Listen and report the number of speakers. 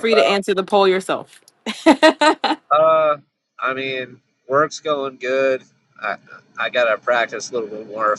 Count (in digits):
2